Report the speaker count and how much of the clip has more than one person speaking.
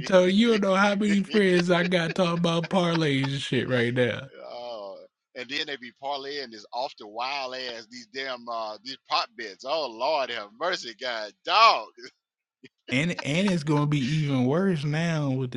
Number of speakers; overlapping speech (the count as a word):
two, no overlap